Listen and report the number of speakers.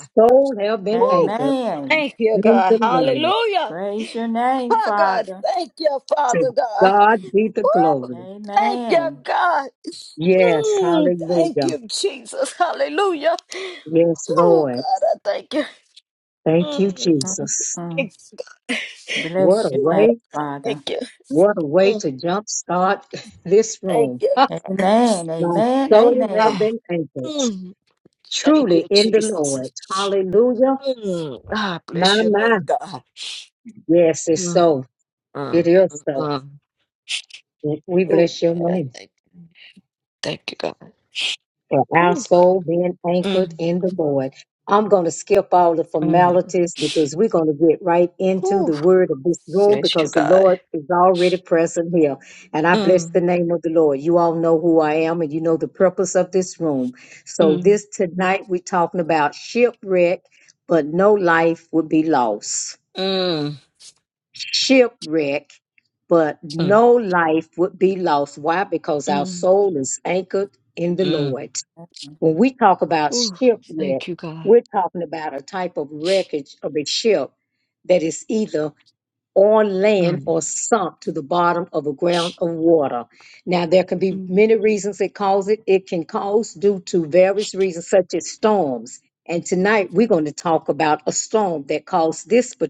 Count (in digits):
3